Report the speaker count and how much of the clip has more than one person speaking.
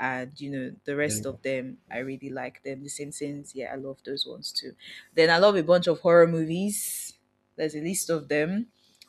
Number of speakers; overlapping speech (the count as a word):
one, no overlap